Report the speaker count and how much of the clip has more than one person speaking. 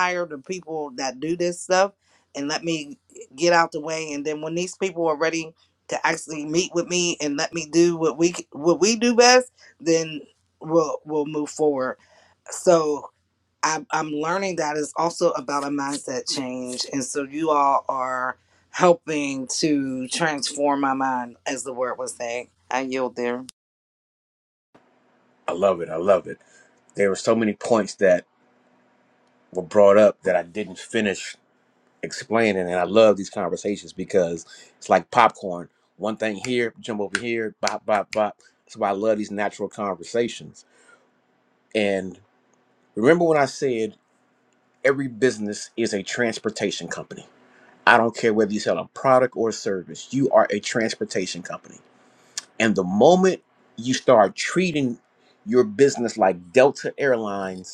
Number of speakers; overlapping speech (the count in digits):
2, no overlap